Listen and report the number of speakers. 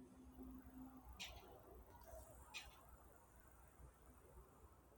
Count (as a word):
zero